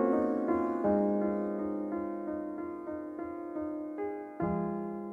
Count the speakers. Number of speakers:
0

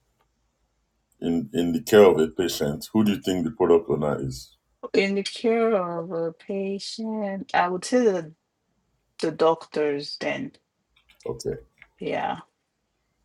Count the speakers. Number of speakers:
2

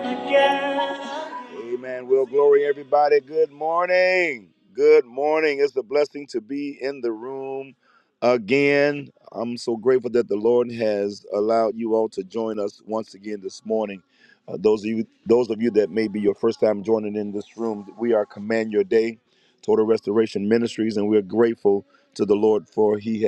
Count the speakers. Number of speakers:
1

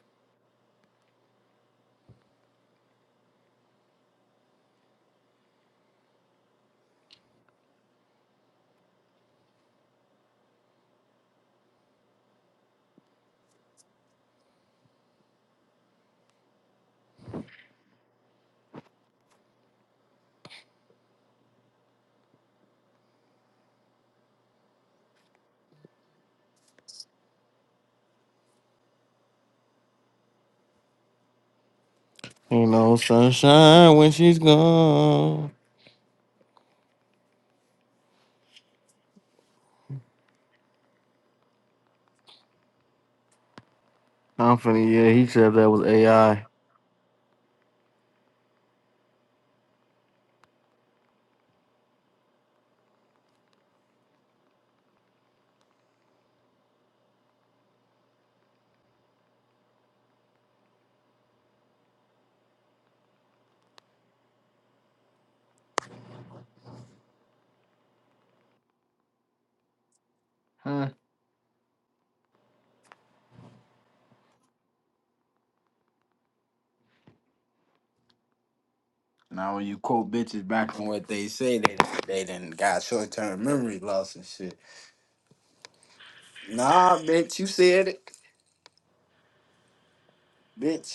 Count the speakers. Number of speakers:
2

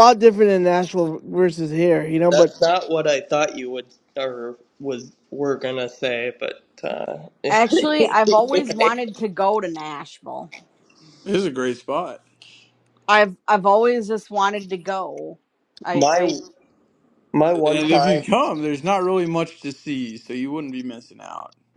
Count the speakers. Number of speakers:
4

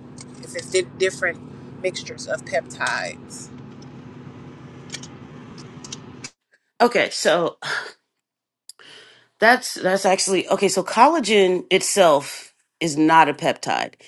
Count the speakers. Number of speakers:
2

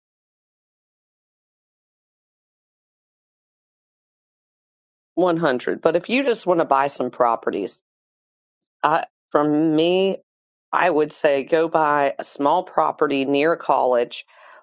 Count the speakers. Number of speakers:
1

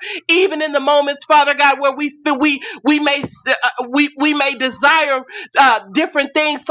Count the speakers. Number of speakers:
1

